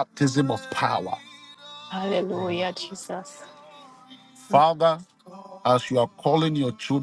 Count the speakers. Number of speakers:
2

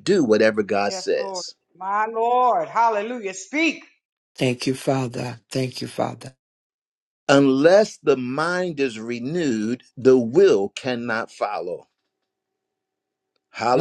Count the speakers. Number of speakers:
3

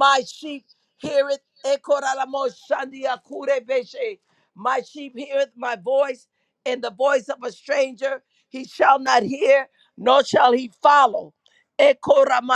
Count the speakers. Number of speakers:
1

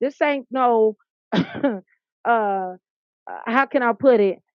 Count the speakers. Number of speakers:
1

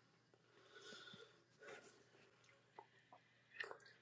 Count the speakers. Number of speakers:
0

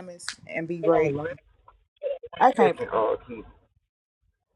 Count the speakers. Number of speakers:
2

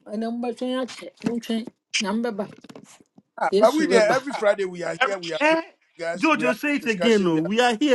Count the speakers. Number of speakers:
3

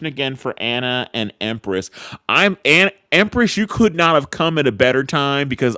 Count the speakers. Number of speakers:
1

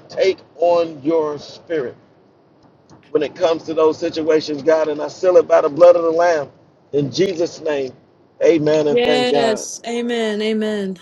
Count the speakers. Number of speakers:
2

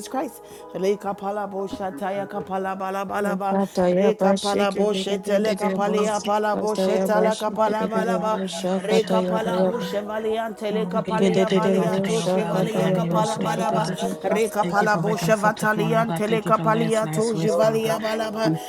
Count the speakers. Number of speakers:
3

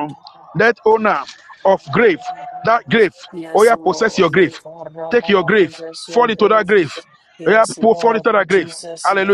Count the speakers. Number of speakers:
2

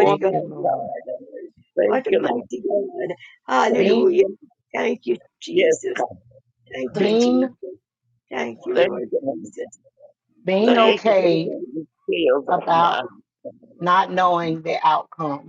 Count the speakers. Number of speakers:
3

